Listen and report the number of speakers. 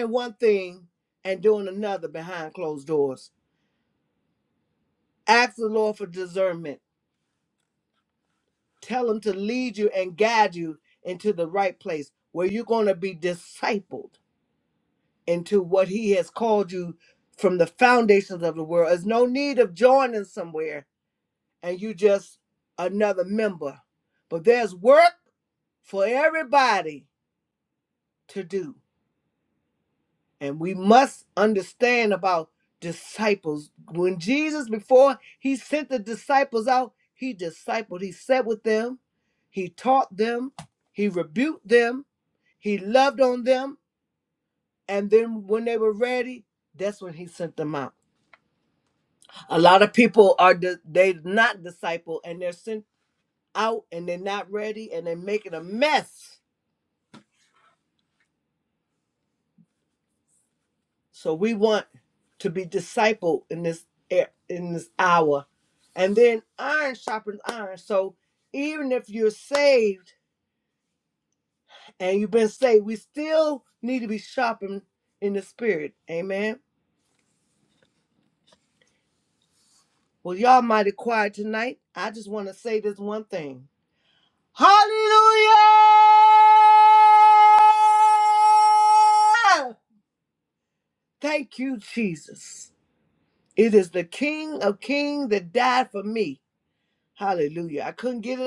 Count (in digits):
1